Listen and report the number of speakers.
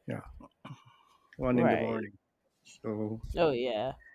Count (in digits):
2